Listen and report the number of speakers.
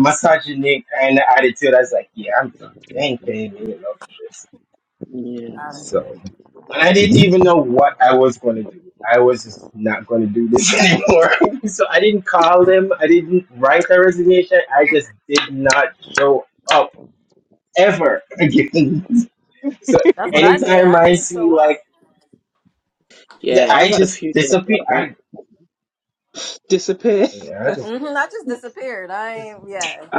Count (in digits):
3